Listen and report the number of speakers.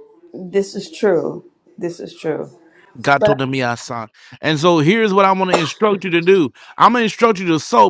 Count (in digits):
2